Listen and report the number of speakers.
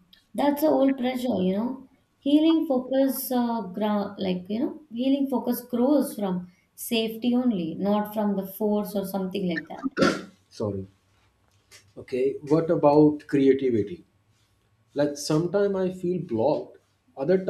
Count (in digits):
2